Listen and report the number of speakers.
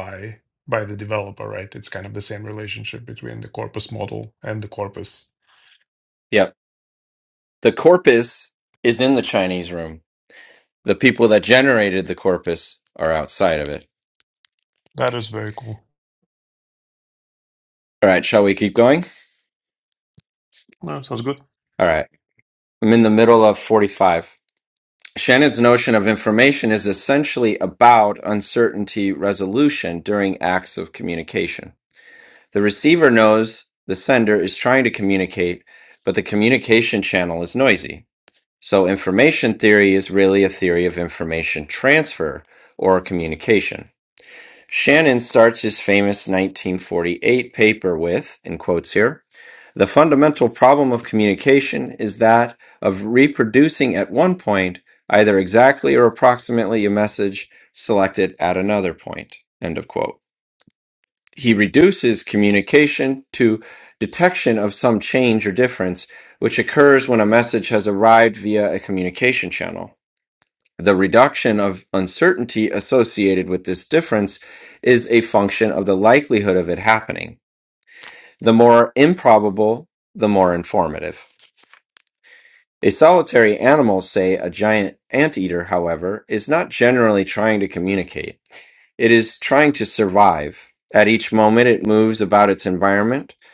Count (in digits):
2